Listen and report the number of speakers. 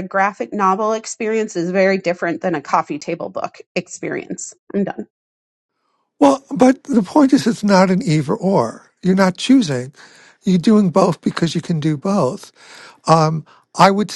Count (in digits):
2